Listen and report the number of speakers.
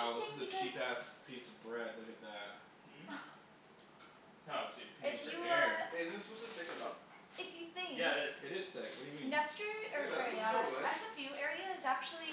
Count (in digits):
4